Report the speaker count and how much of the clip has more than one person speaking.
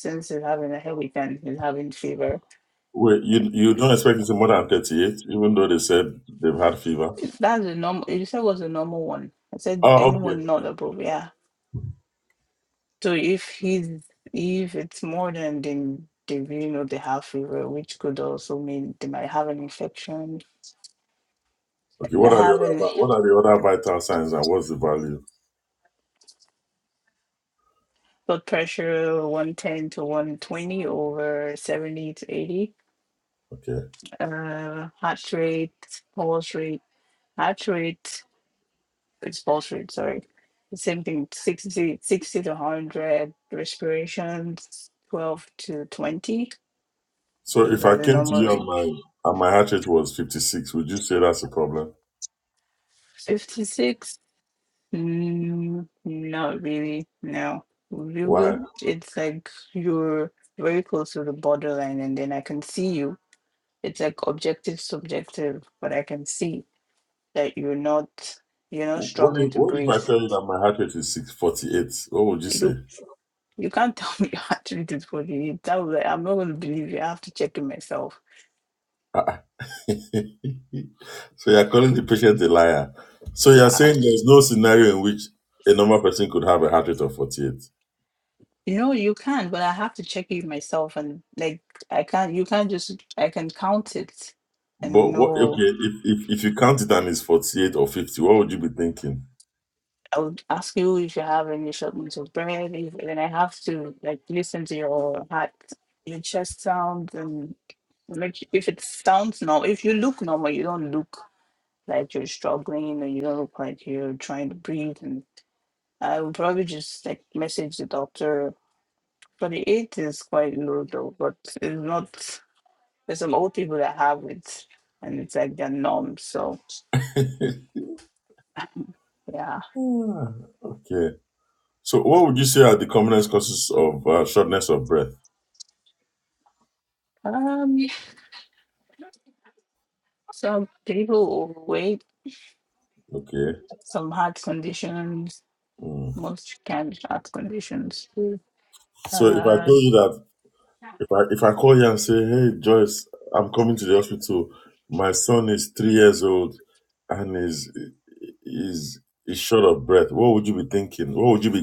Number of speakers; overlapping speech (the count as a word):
two, about 4%